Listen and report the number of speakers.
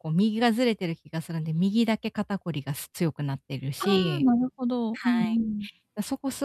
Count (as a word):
two